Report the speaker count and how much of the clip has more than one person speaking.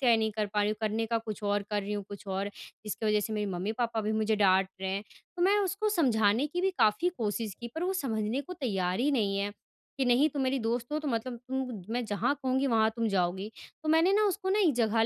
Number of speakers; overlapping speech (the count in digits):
1, no overlap